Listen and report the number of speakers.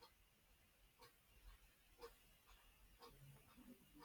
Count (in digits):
0